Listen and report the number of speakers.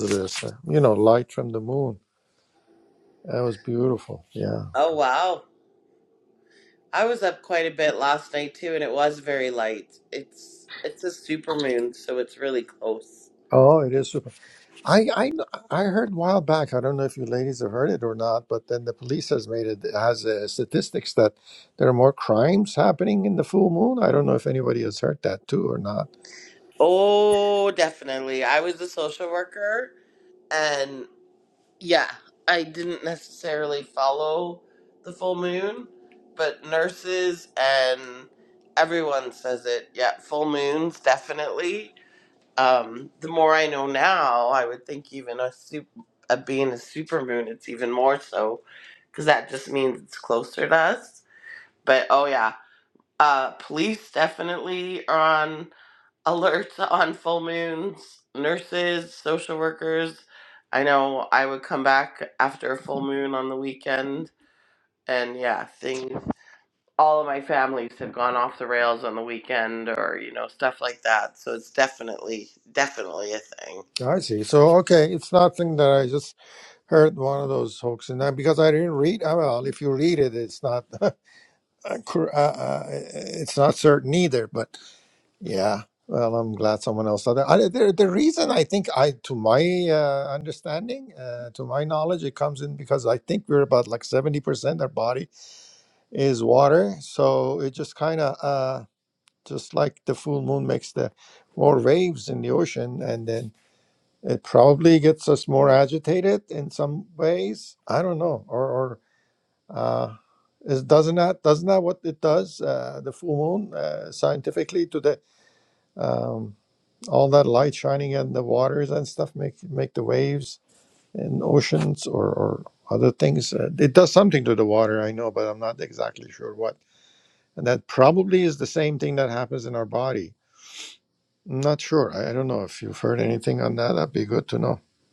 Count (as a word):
two